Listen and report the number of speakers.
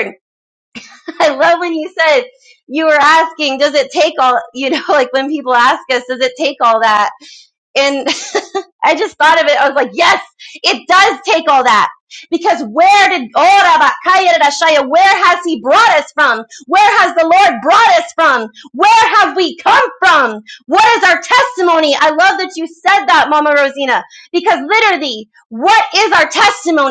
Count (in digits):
1